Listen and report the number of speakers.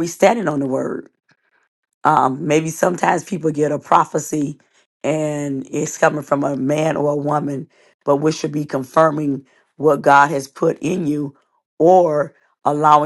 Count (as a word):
one